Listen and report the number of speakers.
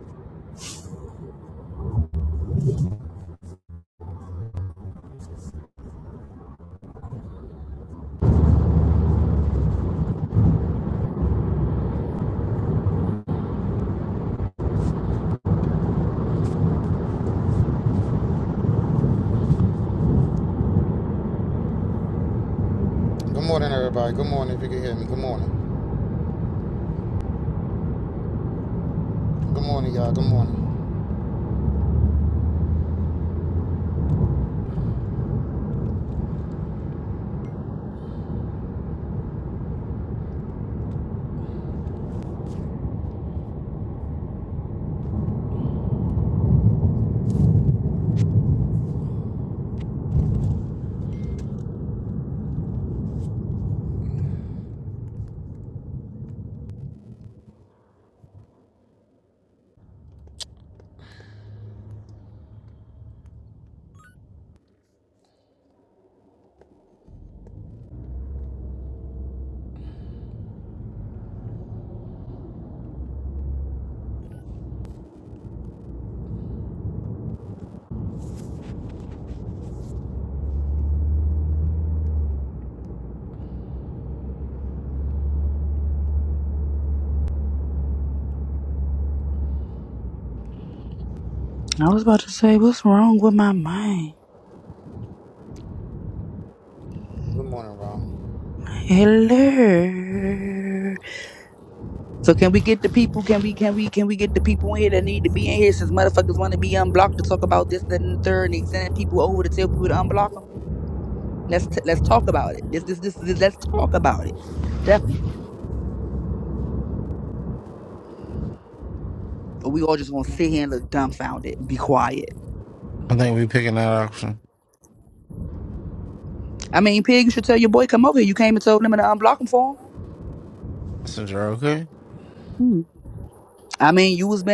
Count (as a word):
three